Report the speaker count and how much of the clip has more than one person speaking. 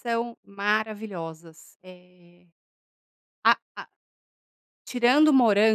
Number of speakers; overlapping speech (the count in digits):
1, no overlap